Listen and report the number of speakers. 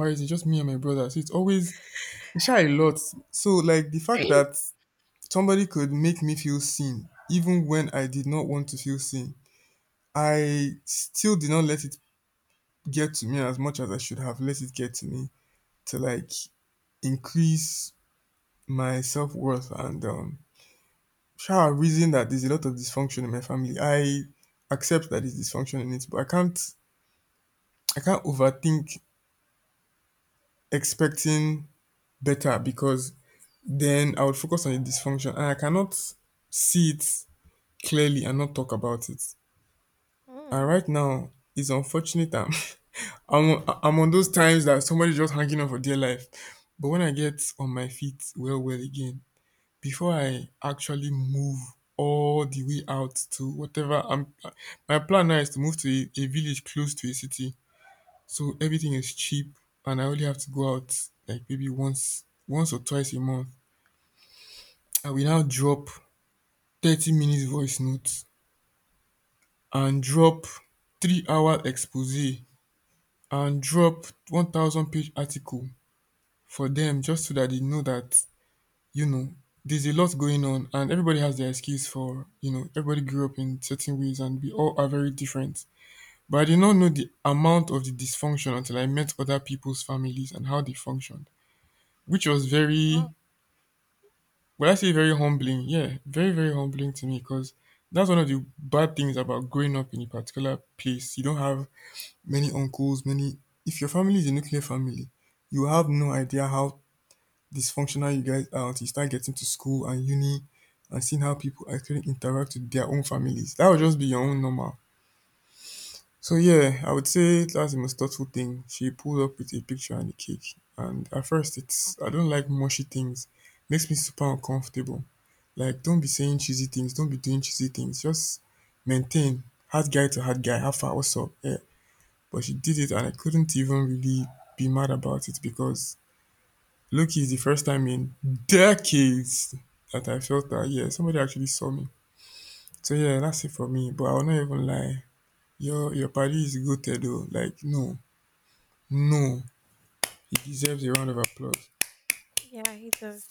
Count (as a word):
two